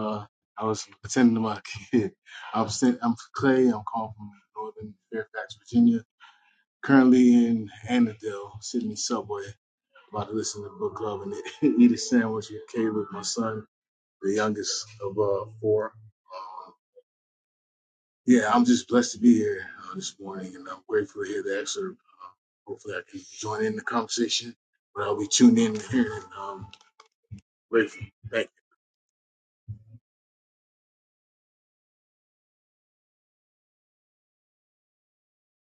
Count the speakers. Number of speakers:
1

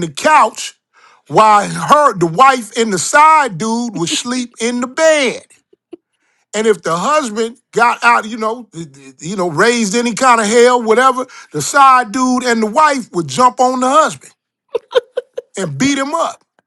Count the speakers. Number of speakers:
1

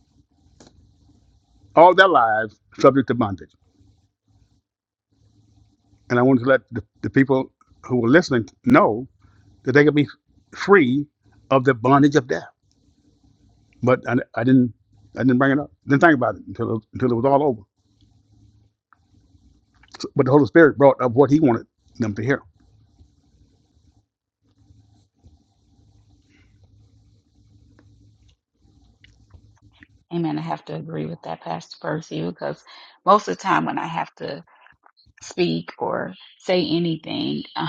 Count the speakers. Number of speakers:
2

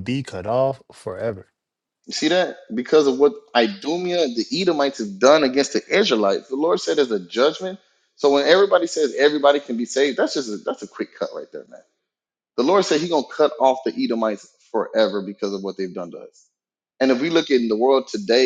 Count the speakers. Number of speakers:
2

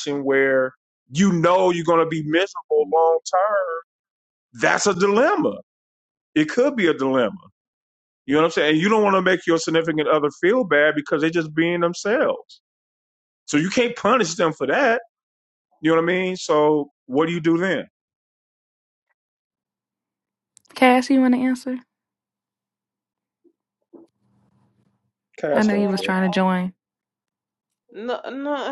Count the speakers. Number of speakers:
3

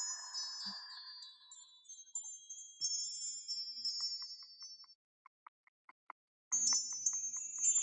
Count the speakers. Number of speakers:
0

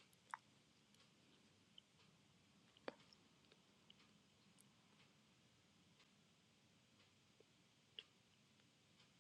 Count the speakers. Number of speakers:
0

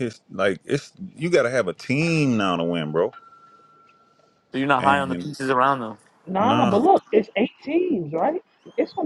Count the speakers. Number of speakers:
3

